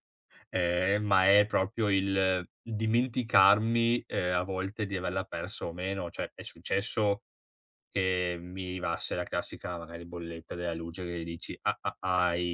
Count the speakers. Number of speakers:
1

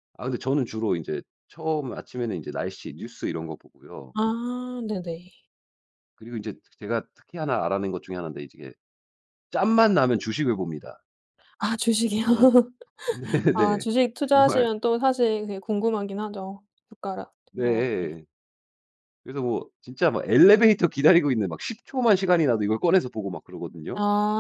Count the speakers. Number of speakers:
2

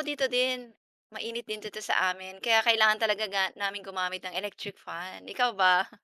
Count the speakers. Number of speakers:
1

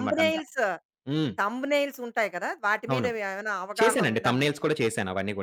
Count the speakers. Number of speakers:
2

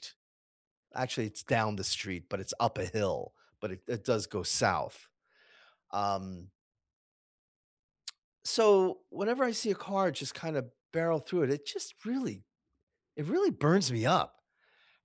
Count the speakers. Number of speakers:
1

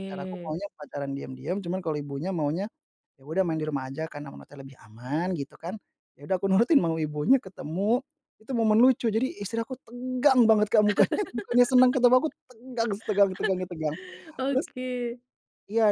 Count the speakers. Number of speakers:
2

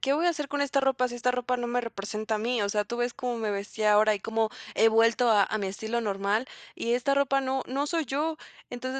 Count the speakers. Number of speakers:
1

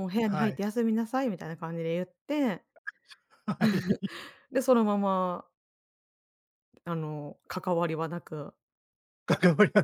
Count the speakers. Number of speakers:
2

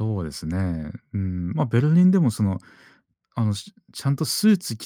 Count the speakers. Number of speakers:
1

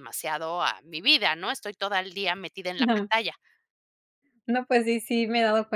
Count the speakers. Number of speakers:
2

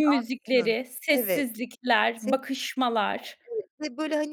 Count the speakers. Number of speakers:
2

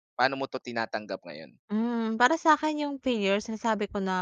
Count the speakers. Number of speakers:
2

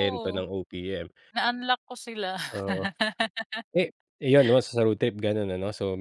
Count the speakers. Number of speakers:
2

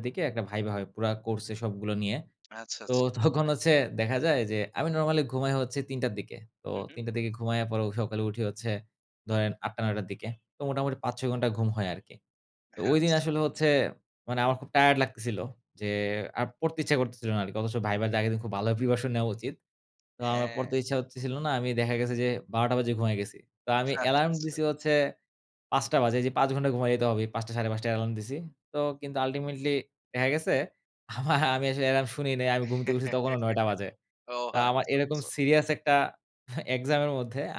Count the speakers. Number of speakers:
2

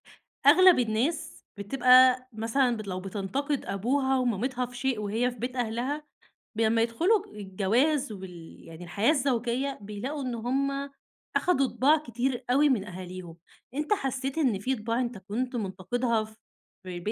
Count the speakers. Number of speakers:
1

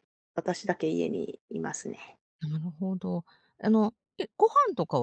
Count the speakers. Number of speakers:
2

